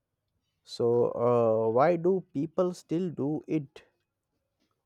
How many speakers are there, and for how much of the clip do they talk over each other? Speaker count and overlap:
1, no overlap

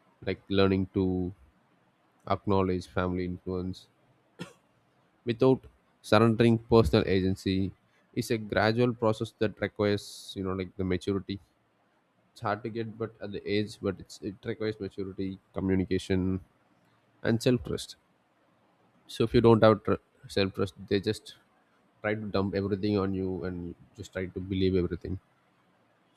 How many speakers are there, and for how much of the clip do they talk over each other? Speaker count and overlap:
1, no overlap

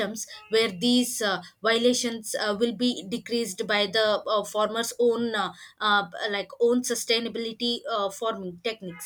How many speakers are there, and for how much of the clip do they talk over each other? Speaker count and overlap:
1, no overlap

